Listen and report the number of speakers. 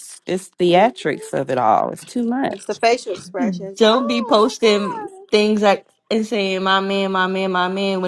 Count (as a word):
three